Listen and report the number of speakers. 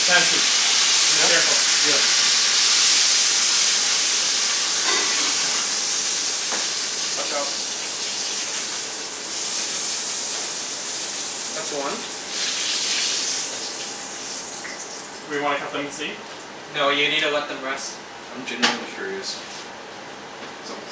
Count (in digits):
3